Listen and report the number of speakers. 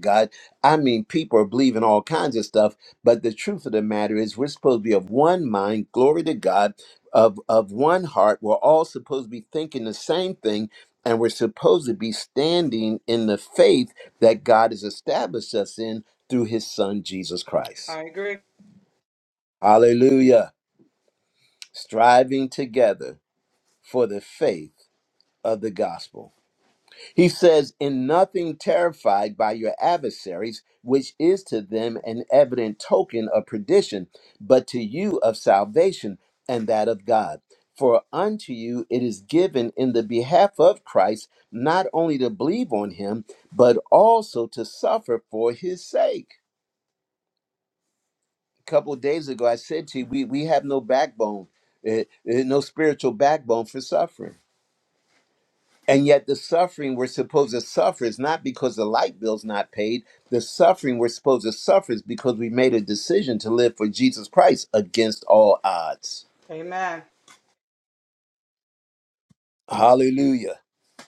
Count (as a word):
two